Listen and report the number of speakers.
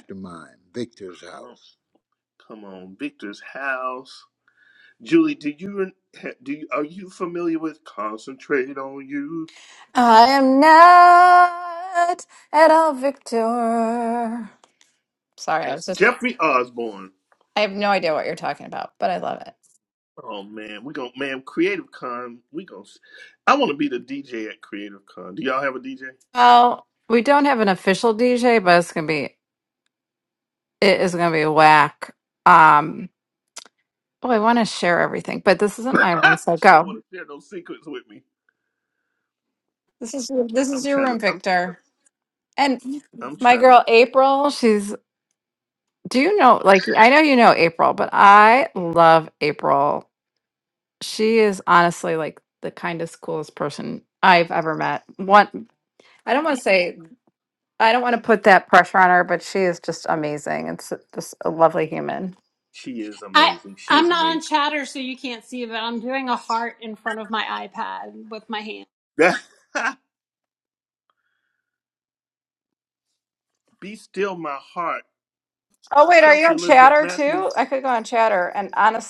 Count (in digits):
4